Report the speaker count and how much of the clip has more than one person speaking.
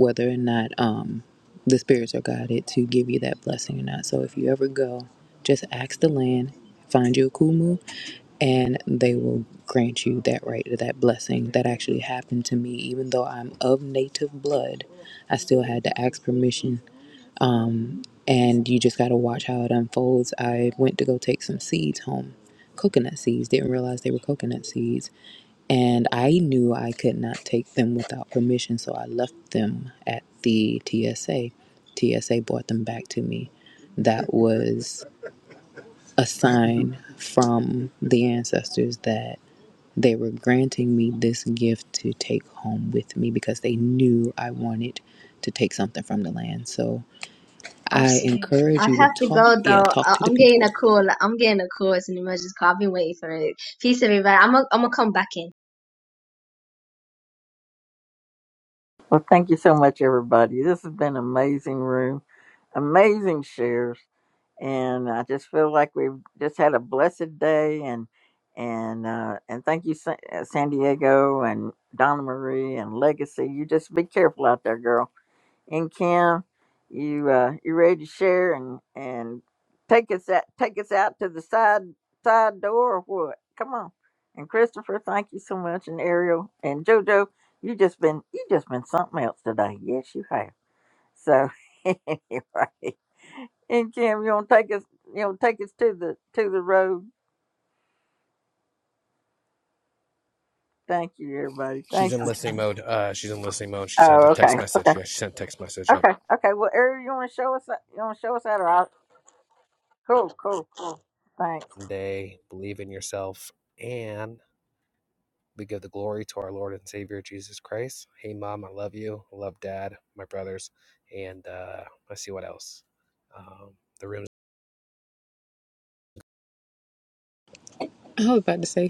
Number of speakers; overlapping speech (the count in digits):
4, about 3%